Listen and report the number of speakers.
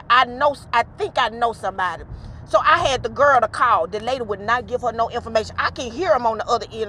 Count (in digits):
1